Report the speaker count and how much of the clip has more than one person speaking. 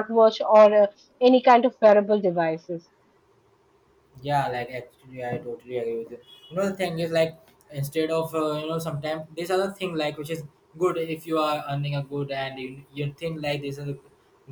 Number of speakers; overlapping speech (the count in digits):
2, no overlap